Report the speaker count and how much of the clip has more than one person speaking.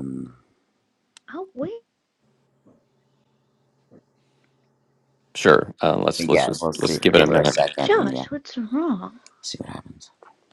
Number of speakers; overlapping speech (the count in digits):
3, about 18%